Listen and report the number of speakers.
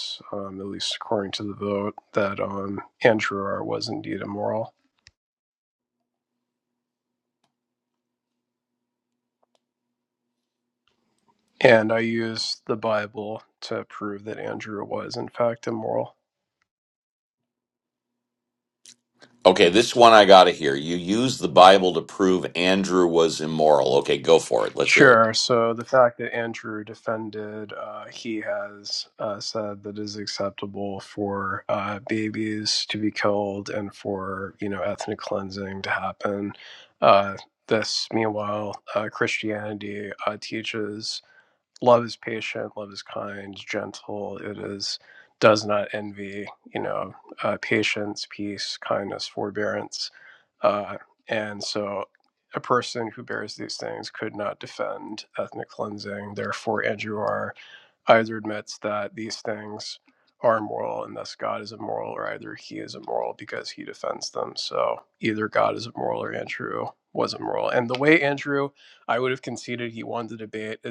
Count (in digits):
2